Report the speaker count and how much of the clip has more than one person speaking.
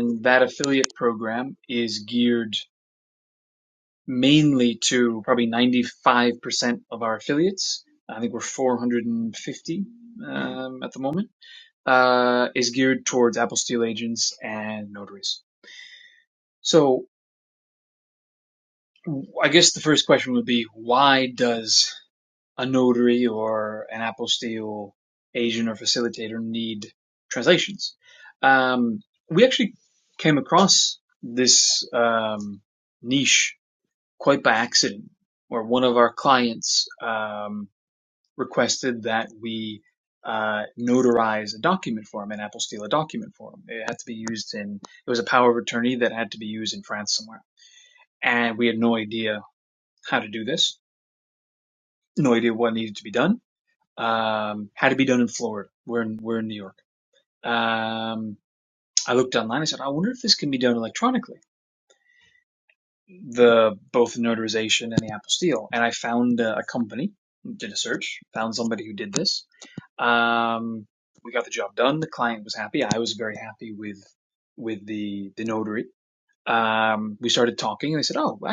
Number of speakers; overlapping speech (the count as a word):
one, no overlap